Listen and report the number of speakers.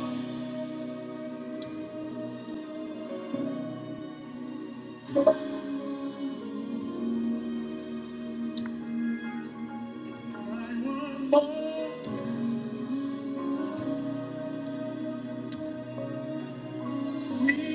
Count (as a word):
zero